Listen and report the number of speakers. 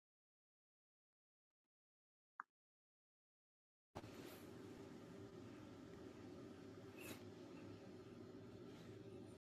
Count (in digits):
0